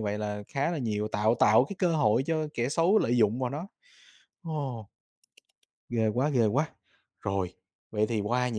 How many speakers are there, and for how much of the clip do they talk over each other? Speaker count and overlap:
one, no overlap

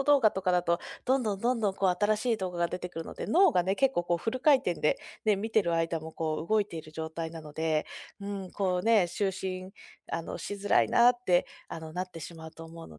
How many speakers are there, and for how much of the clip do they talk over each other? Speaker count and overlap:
one, no overlap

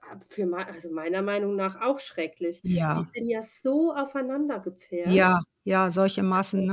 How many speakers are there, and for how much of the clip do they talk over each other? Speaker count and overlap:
two, about 6%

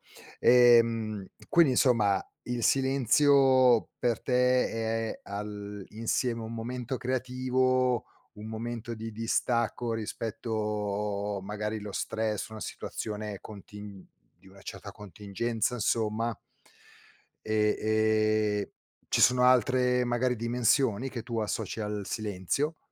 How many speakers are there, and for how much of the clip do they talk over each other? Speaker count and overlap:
one, no overlap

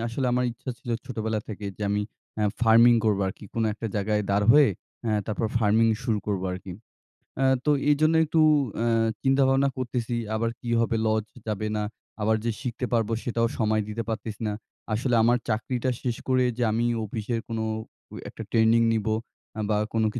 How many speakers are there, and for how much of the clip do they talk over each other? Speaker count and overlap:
one, no overlap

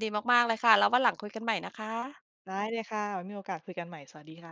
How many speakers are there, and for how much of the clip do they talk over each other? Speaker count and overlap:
two, no overlap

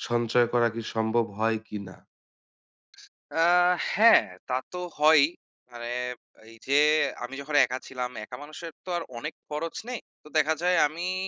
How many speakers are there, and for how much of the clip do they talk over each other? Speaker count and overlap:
two, no overlap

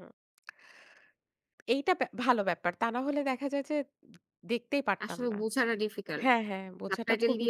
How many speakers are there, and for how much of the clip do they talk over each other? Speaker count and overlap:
two, about 15%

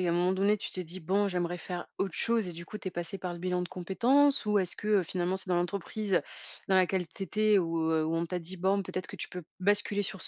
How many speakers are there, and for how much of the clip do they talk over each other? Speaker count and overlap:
one, no overlap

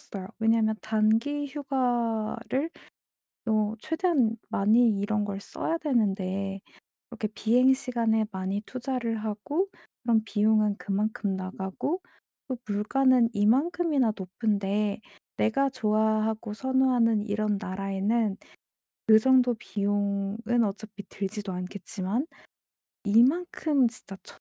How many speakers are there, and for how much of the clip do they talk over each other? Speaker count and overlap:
one, no overlap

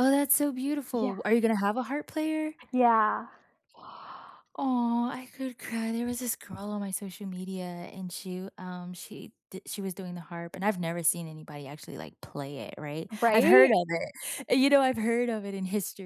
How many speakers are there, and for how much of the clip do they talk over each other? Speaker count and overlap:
two, about 5%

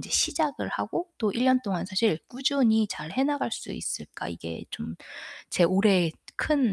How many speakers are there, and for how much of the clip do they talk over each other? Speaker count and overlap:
one, no overlap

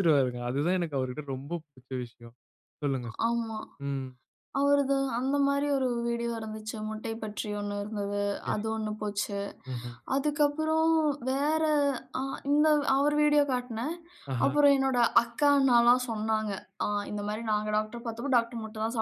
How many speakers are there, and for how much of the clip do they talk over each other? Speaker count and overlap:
two, about 1%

